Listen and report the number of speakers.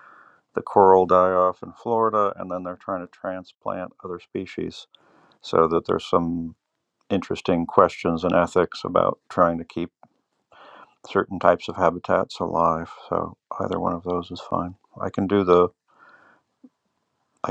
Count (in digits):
1